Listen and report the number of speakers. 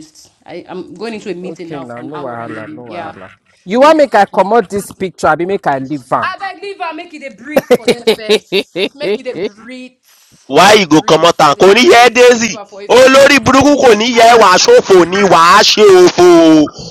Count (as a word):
three